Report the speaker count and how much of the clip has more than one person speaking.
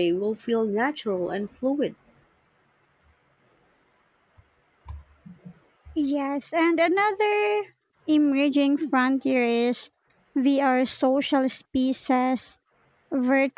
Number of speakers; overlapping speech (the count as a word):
two, no overlap